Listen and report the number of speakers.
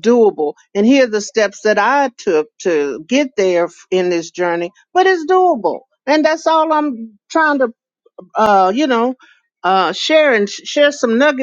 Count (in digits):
1